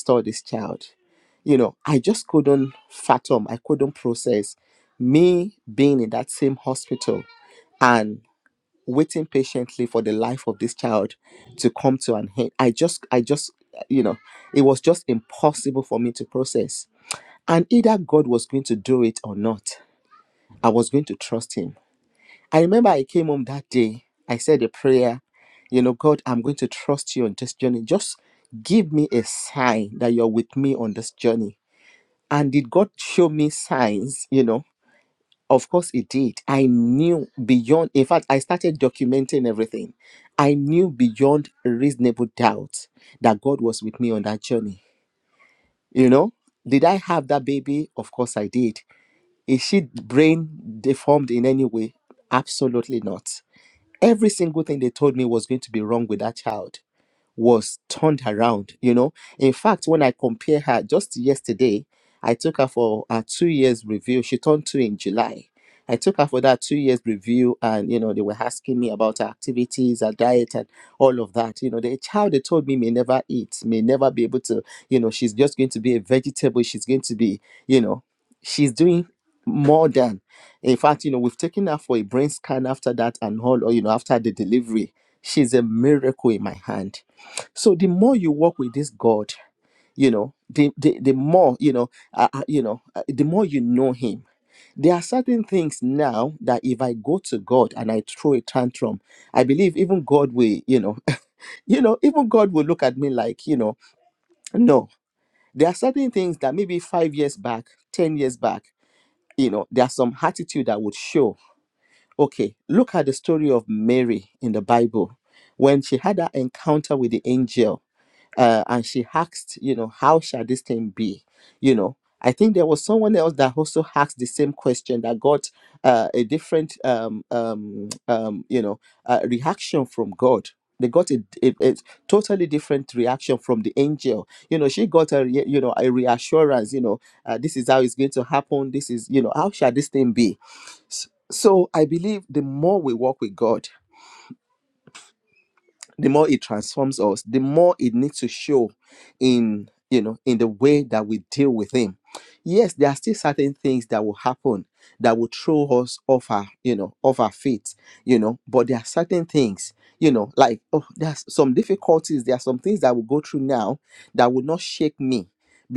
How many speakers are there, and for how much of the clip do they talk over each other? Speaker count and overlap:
one, no overlap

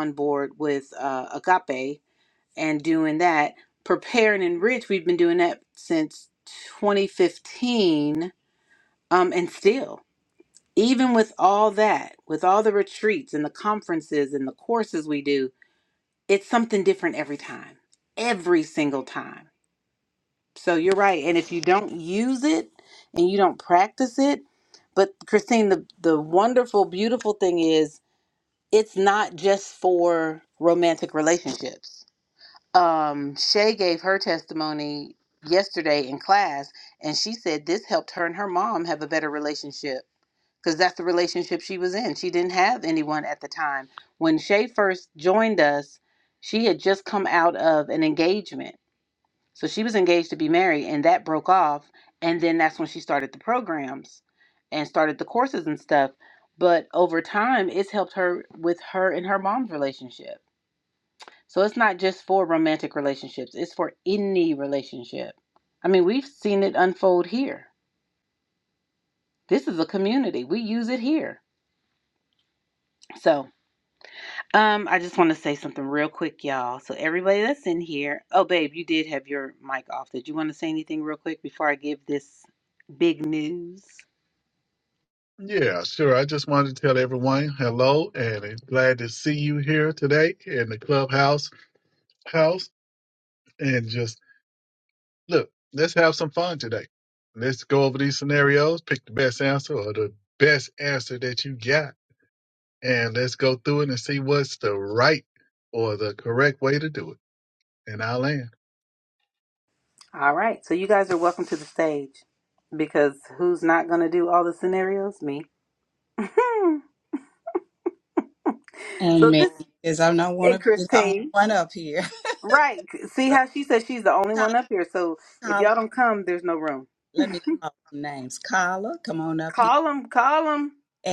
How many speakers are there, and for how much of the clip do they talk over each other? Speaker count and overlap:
three, about 1%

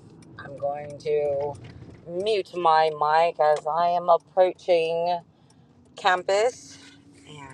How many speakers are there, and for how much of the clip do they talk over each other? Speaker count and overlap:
one, no overlap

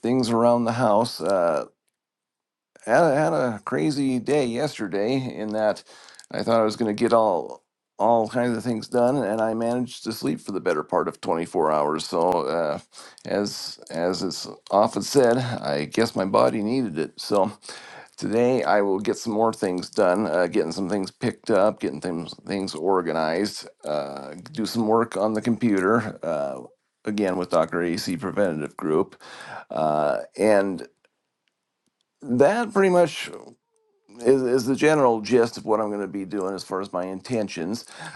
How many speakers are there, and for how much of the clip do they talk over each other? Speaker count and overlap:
one, no overlap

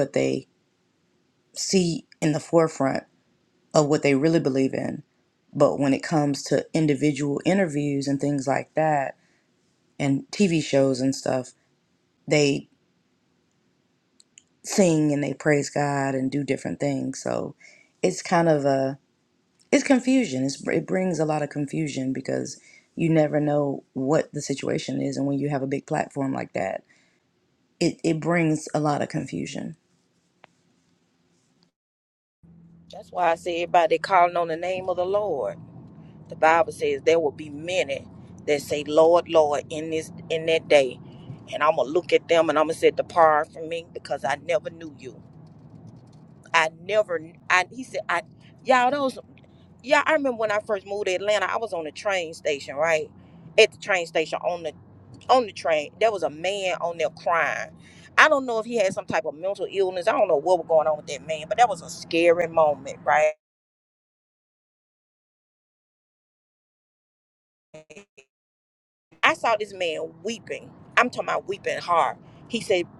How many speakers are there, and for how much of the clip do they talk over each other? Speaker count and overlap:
two, no overlap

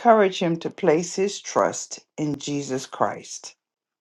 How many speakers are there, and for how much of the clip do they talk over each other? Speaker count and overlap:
one, no overlap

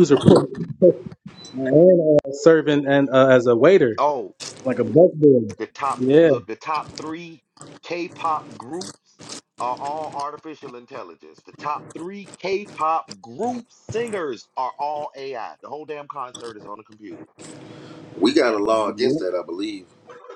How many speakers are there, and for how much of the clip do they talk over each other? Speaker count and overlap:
three, about 4%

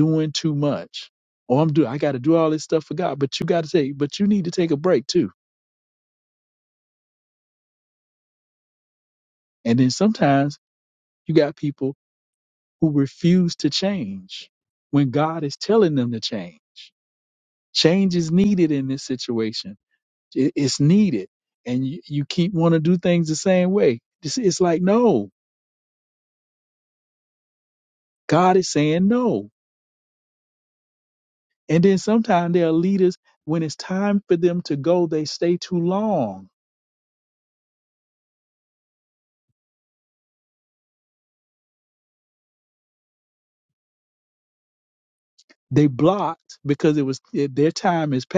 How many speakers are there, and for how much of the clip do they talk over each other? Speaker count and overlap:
one, no overlap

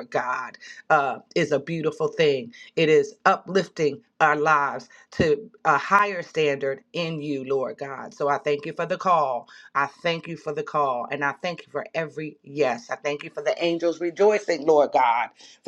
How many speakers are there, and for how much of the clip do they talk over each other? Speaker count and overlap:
one, no overlap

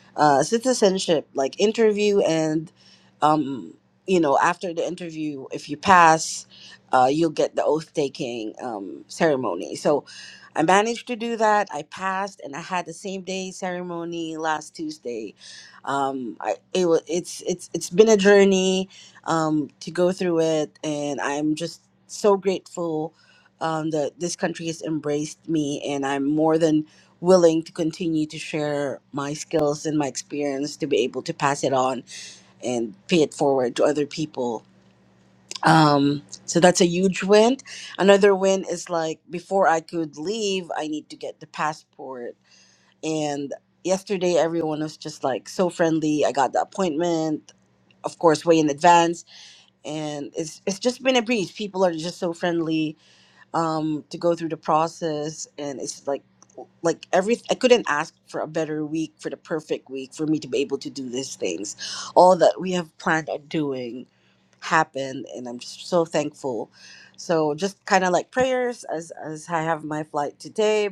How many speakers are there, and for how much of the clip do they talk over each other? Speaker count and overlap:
one, no overlap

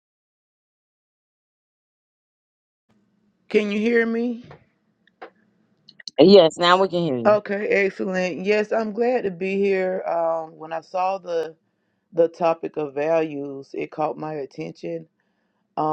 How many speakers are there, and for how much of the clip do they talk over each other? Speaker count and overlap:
two, about 1%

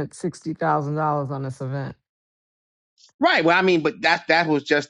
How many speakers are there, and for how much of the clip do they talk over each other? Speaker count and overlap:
two, no overlap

